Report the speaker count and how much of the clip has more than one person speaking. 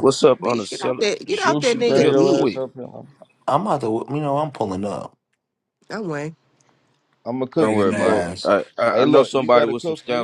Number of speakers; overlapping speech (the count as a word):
four, about 43%